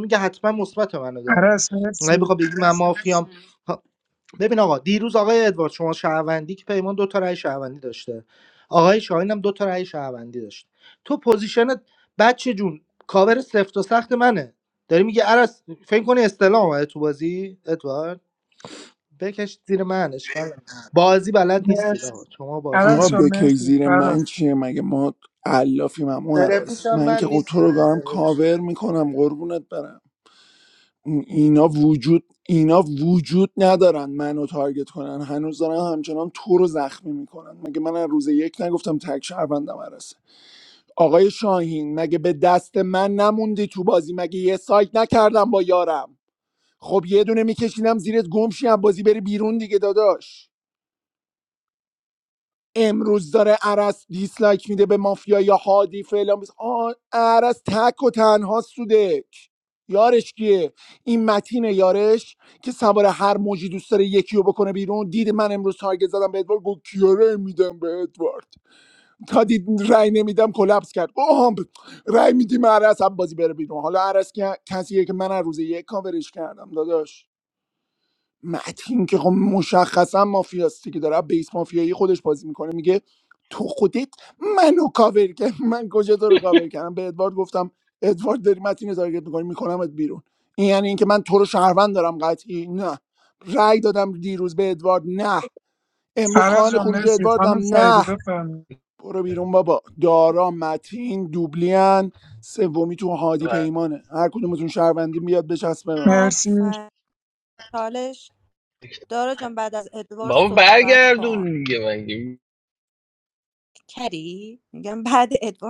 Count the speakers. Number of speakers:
five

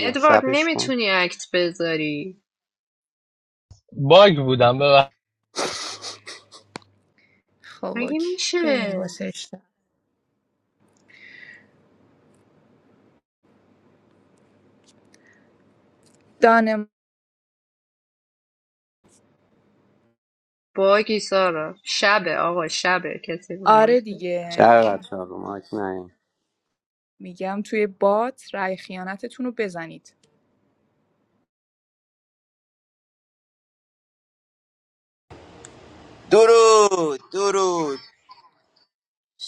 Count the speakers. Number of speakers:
five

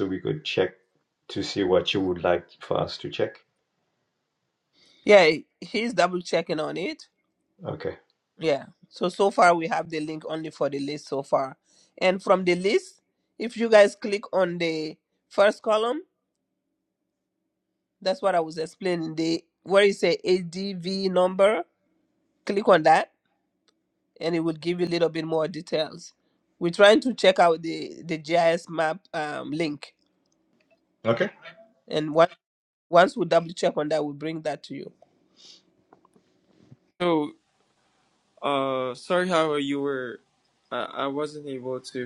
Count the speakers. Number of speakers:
three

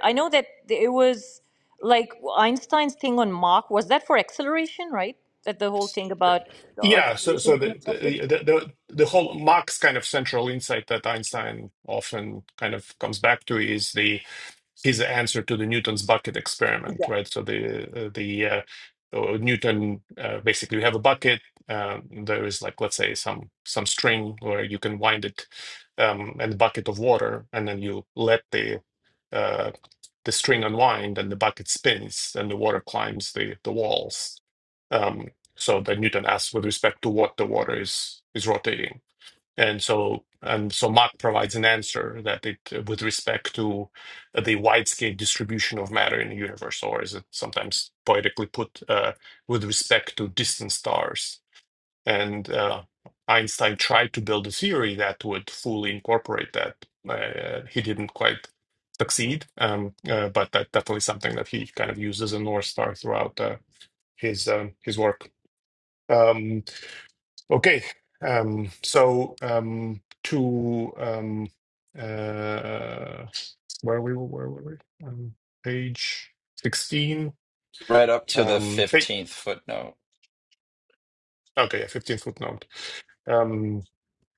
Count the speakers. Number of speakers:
three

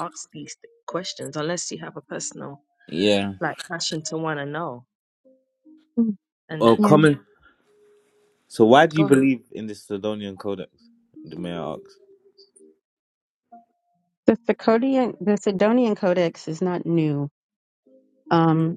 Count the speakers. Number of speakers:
three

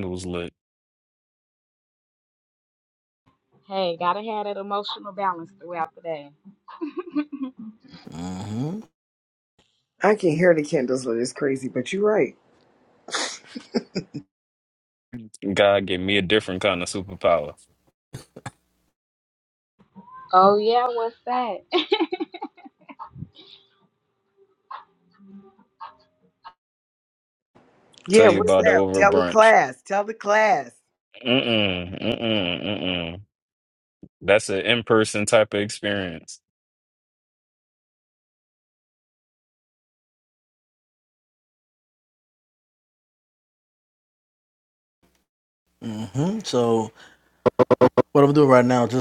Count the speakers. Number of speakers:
four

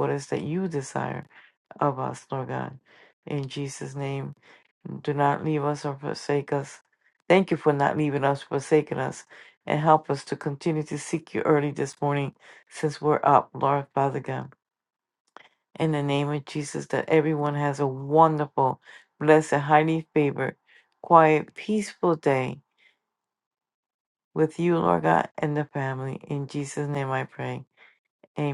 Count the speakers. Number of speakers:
one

